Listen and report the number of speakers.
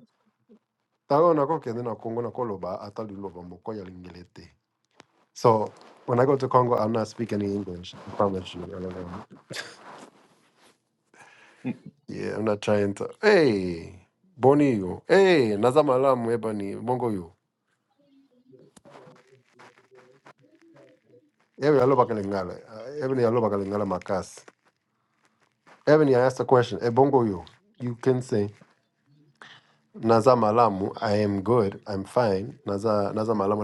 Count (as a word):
one